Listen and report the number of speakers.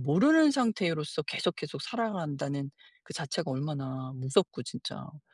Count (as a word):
one